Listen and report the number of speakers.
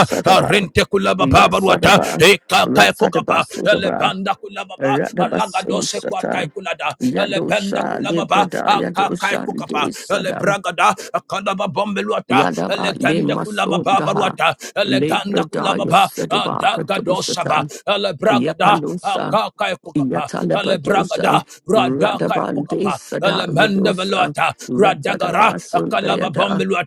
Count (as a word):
two